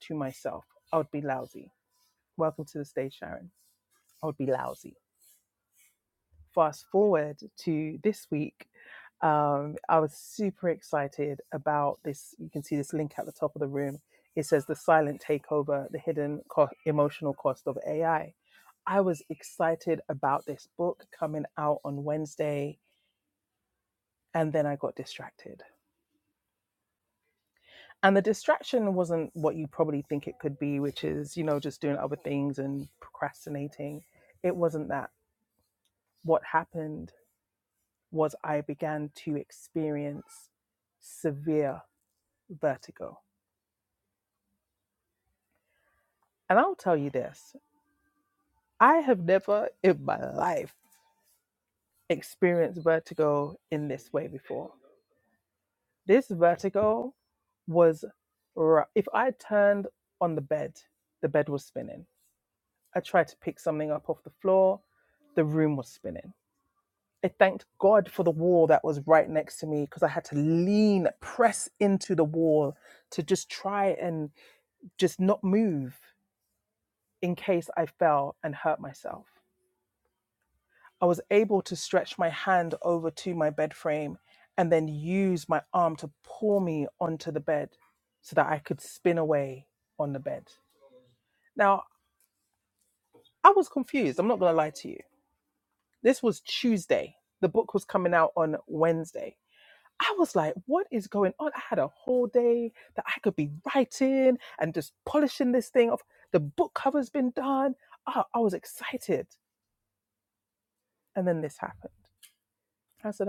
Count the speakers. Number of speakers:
one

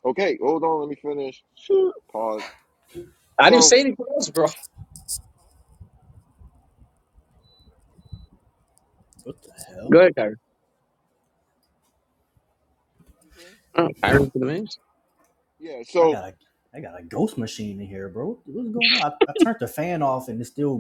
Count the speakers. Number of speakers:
three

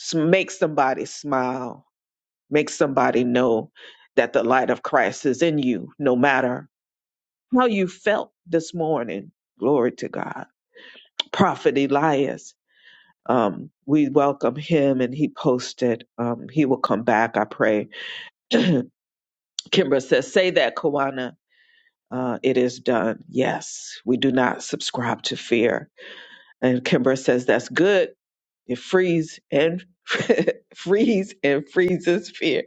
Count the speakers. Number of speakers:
one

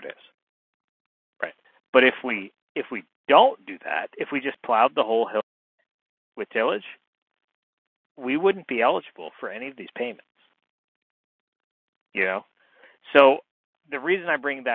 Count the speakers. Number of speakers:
one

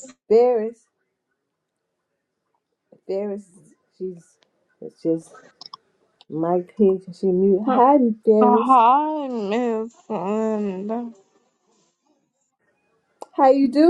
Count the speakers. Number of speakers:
two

